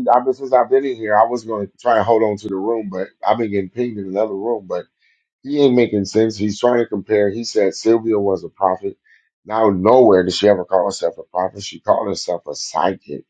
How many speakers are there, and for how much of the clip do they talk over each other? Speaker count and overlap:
1, no overlap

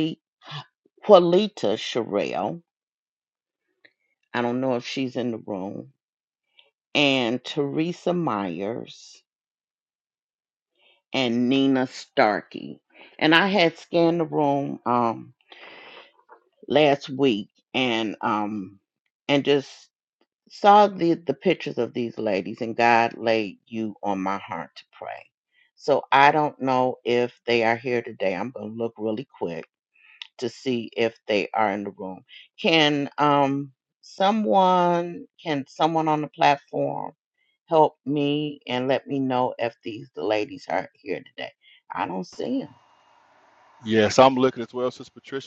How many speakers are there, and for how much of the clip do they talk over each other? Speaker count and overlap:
2, no overlap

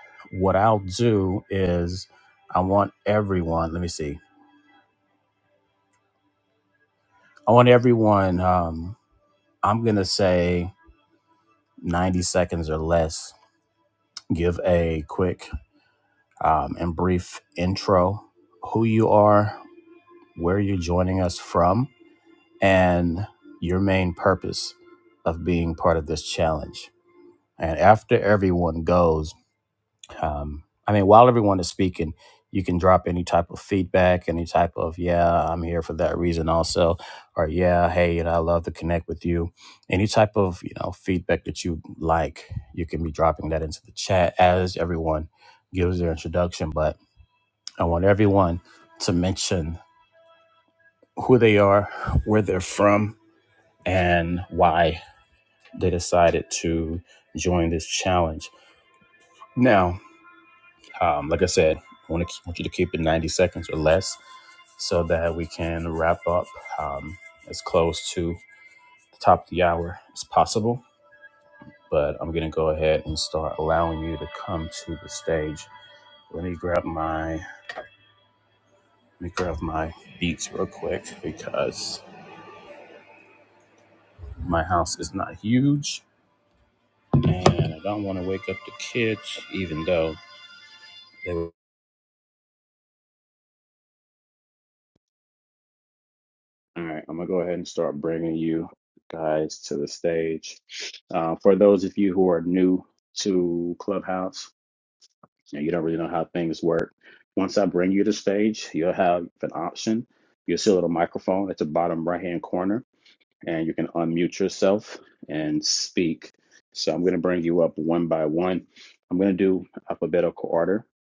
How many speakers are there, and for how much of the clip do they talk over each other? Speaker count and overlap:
1, no overlap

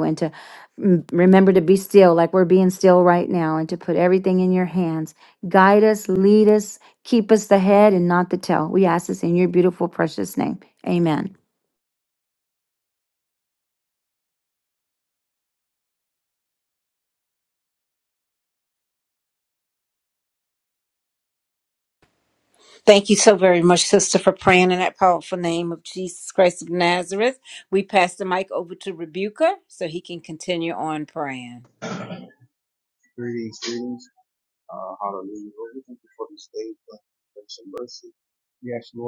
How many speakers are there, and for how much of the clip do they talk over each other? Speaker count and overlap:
3, no overlap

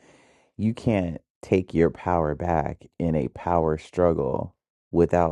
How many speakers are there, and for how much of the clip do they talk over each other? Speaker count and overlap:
1, no overlap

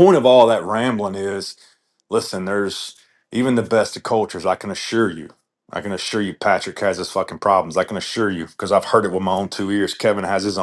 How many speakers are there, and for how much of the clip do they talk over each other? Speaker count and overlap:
1, no overlap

